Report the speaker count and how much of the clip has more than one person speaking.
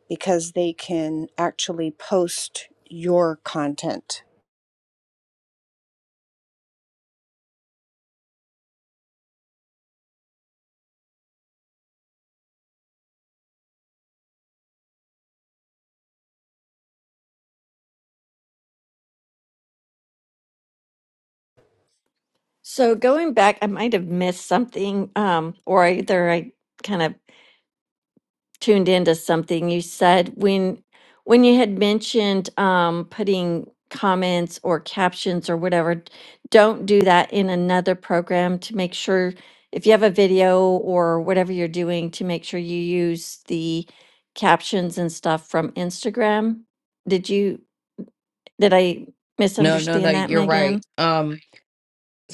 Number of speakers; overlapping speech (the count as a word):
three, about 2%